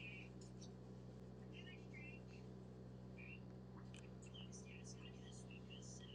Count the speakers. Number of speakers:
0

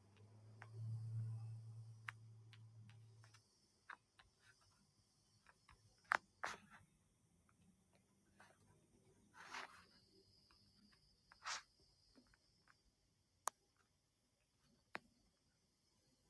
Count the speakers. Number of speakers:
0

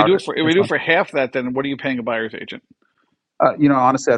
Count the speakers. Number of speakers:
2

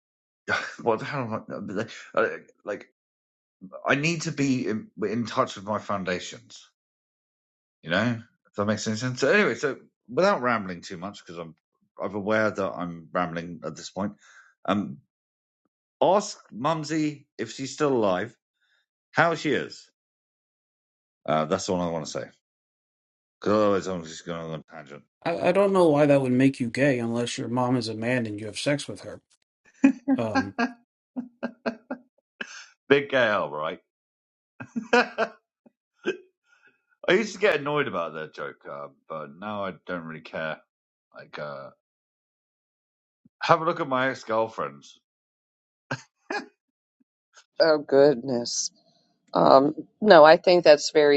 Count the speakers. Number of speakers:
3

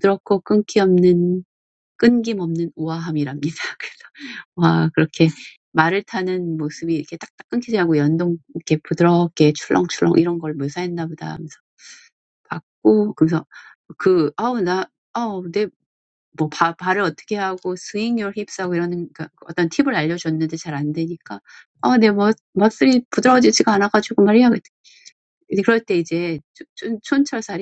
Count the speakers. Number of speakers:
1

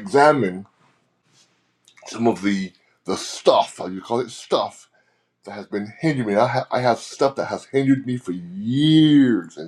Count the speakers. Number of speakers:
1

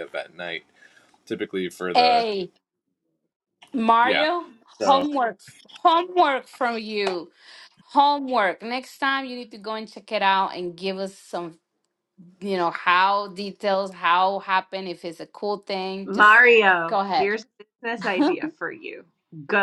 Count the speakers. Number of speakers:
3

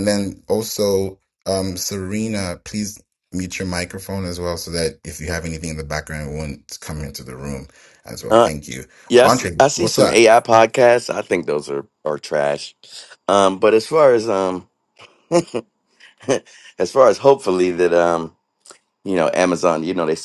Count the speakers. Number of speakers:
2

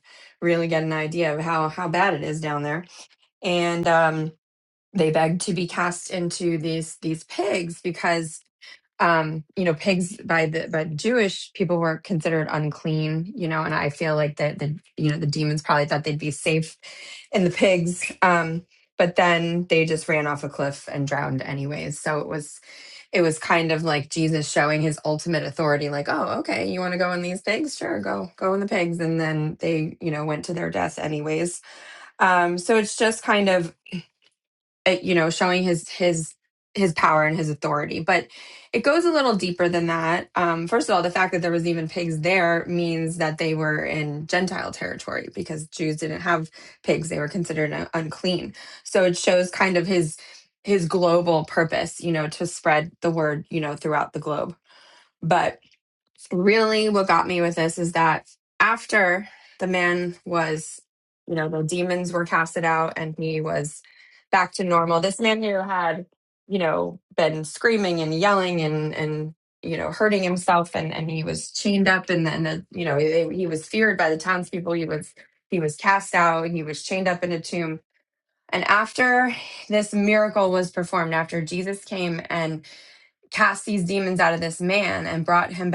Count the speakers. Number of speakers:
1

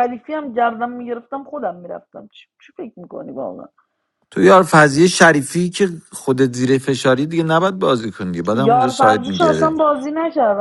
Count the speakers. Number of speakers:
2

